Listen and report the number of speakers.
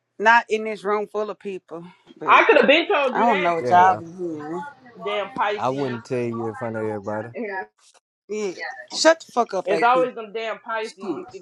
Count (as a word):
three